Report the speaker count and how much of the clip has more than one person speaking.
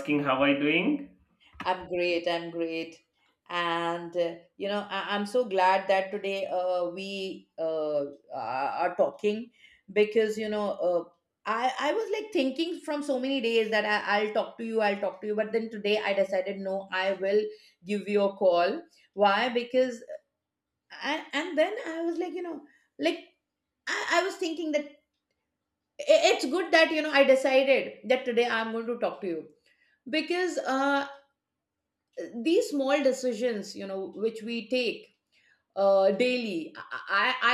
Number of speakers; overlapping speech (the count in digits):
2, no overlap